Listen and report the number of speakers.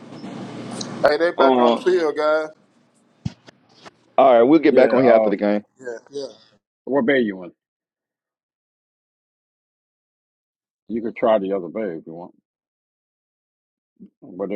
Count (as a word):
three